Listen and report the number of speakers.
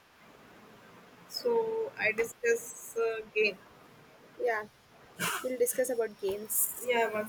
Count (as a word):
two